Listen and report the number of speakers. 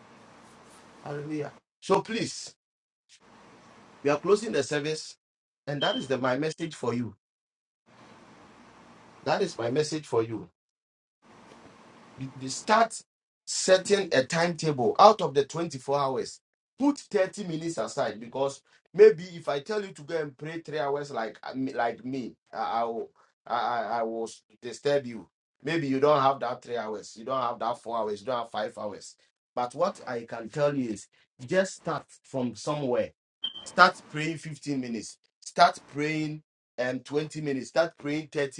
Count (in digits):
1